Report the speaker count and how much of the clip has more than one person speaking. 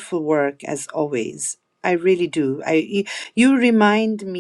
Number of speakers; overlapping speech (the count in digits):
1, no overlap